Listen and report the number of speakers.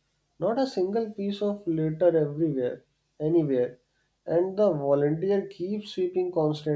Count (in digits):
1